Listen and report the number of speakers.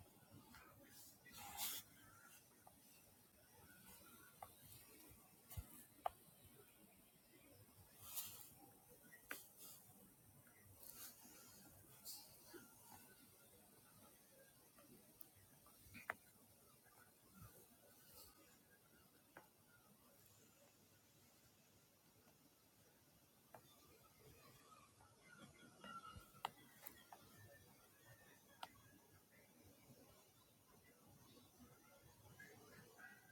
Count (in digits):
0